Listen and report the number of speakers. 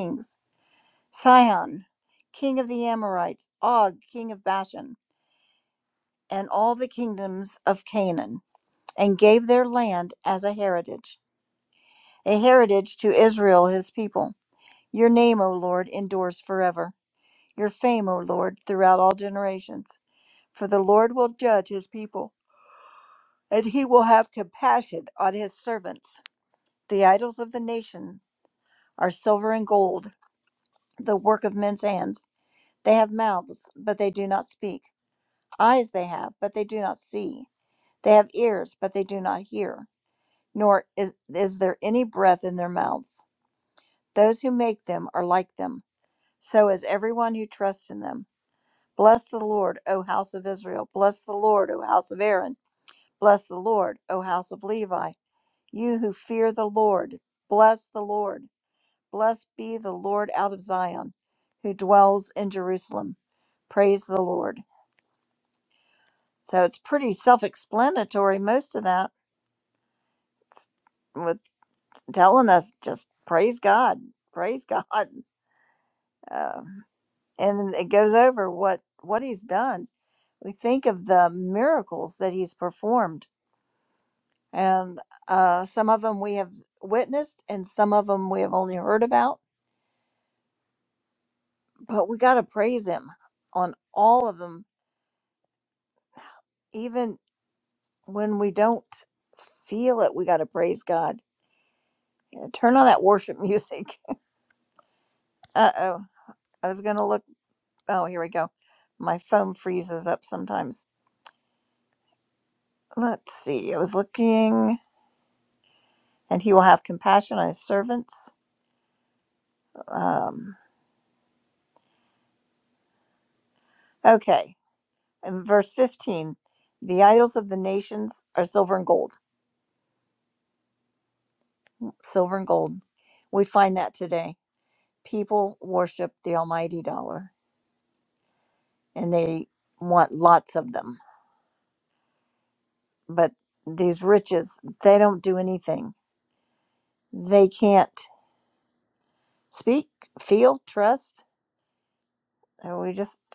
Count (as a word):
one